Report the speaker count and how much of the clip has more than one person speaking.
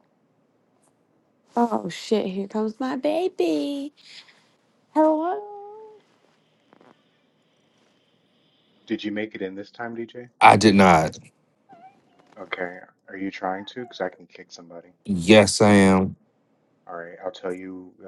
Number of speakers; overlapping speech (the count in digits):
3, no overlap